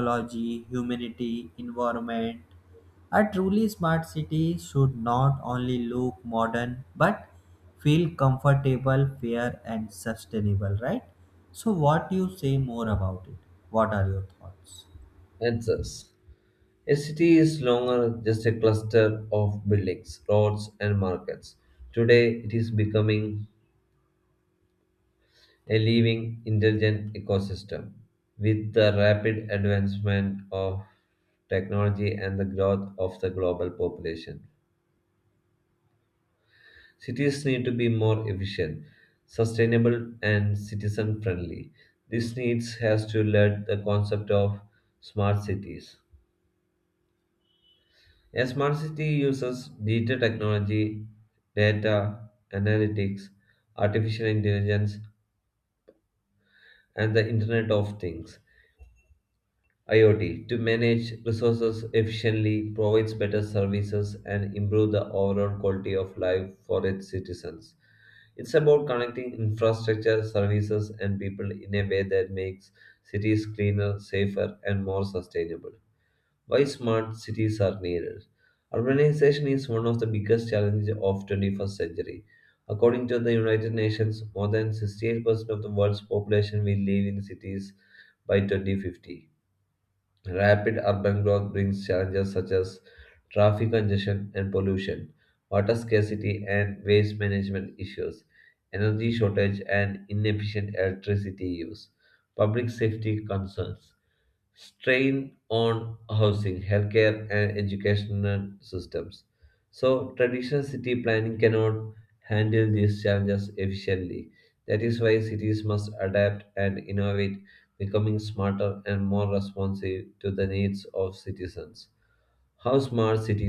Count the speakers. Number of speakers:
2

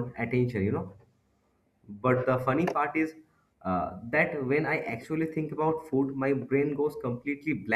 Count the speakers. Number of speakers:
1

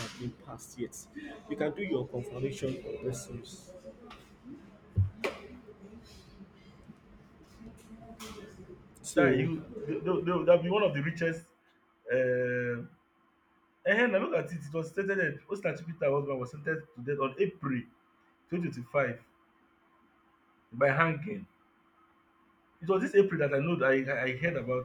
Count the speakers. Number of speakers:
2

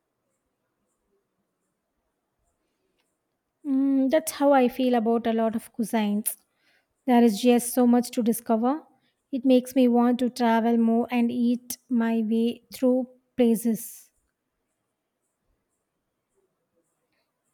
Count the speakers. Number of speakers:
1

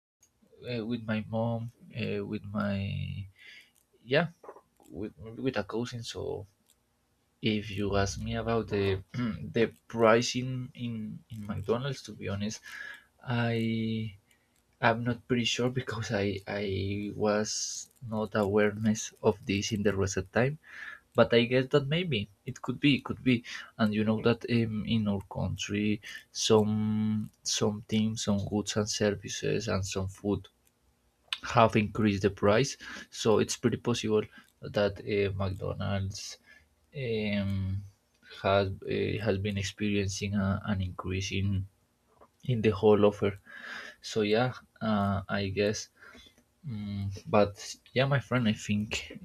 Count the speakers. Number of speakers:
1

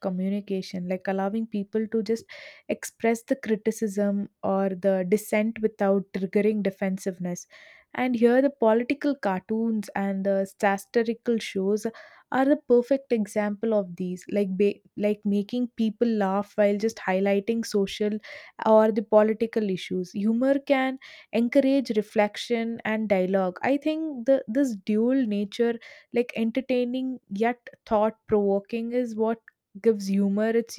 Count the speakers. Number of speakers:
1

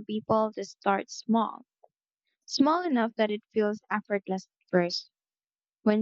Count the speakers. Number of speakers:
1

